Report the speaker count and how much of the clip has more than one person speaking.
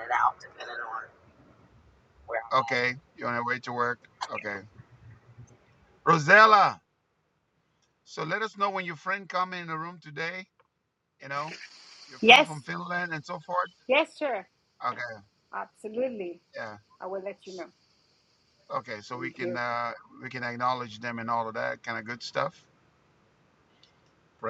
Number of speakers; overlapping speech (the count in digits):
3, about 3%